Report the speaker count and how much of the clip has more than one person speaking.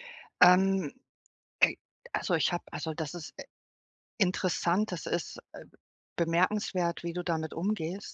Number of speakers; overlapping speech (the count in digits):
1, no overlap